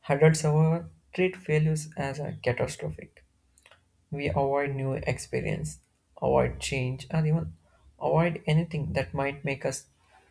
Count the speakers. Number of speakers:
1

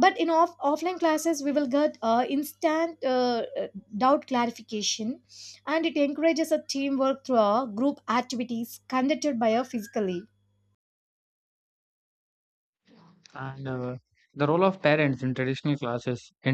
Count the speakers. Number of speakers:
2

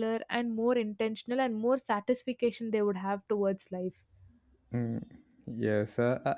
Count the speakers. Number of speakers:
2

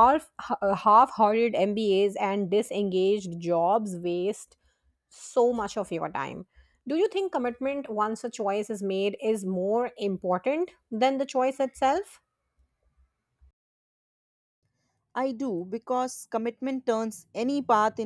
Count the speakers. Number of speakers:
2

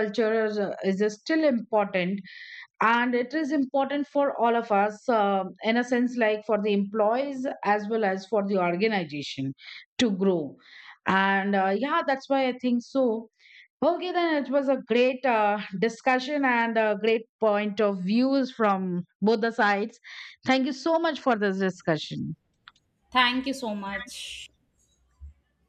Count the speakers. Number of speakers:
2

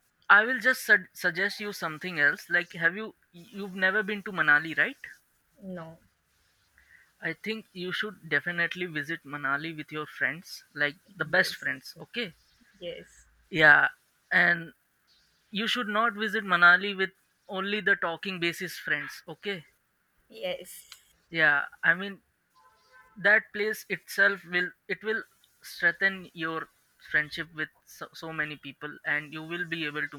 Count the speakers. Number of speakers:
2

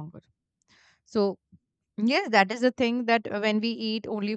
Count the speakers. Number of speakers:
1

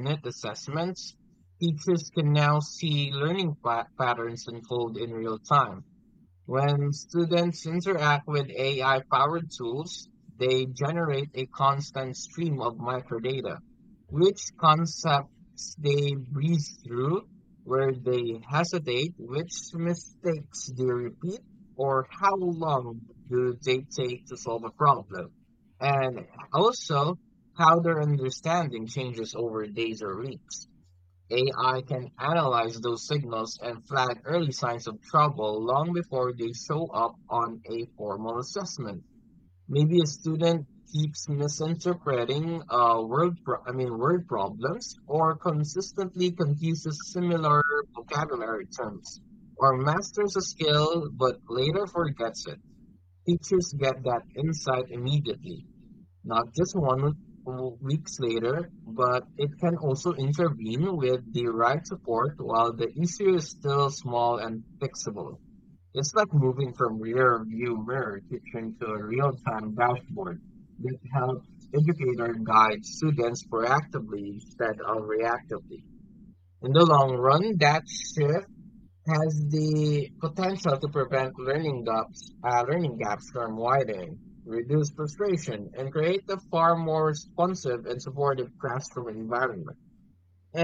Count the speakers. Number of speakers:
1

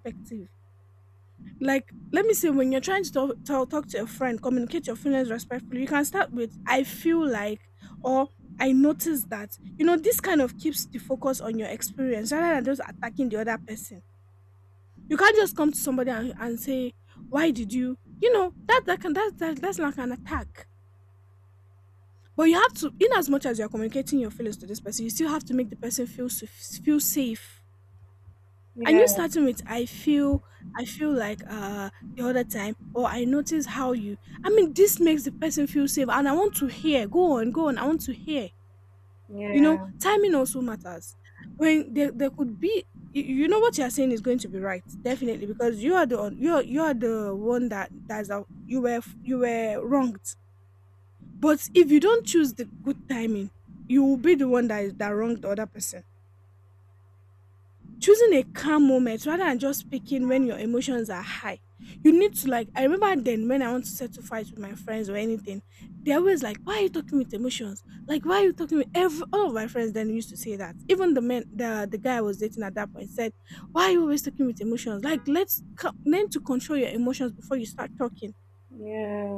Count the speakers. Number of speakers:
2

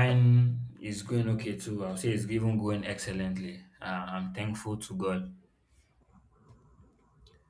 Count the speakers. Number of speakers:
1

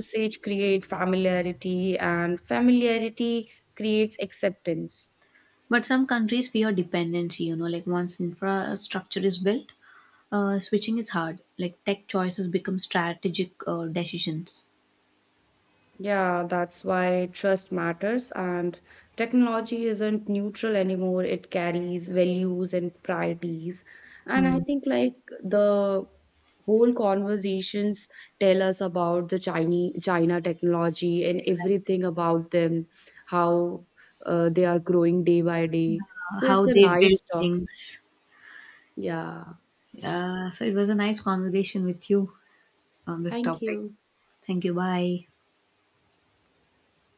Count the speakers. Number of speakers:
2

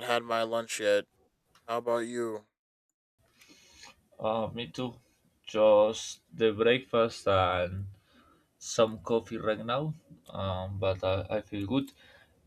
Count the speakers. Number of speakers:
2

